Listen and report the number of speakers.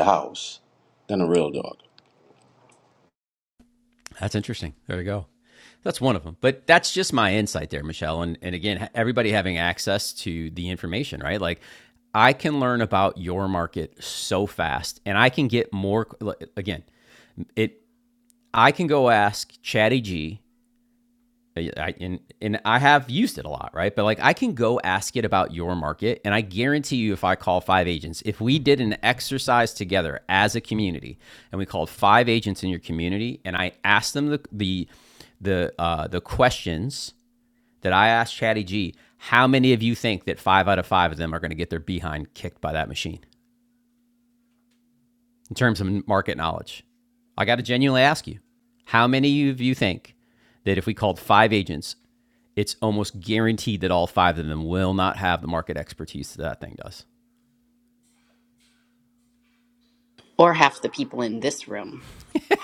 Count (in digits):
3